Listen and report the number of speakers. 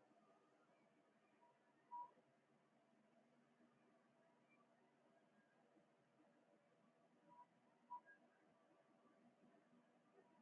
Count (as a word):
zero